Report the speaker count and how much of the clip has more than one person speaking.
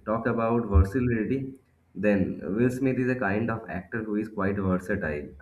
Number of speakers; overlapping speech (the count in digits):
1, no overlap